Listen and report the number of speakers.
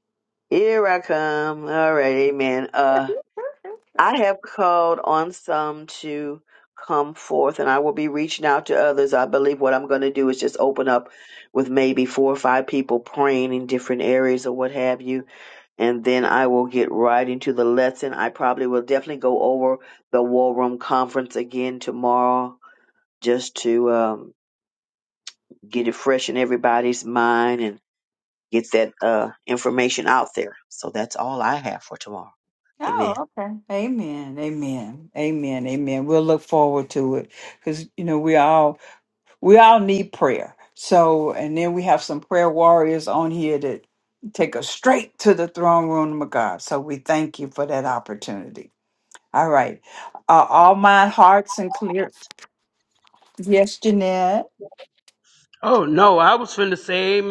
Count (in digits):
3